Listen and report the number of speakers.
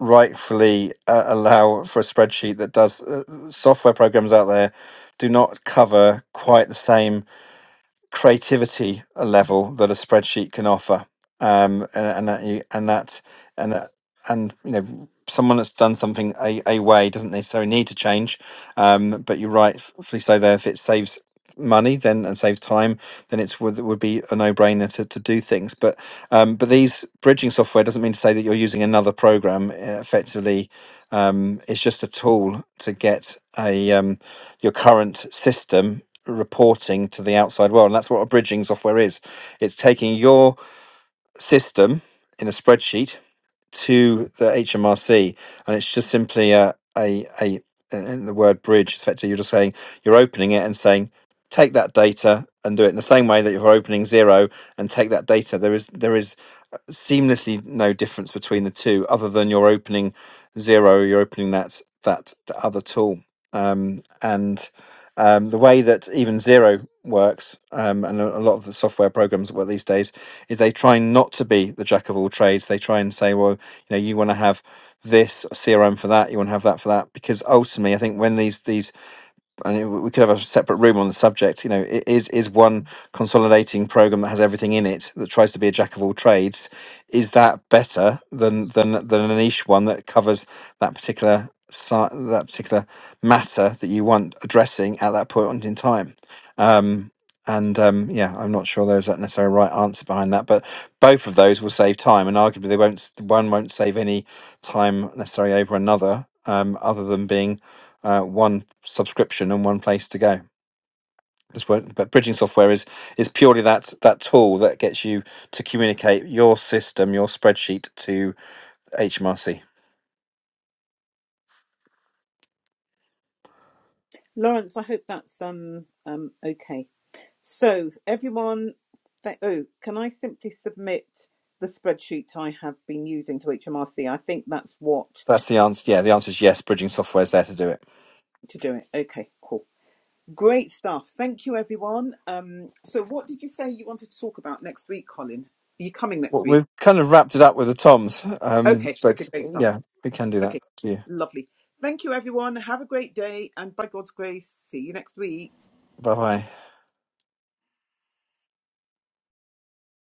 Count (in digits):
2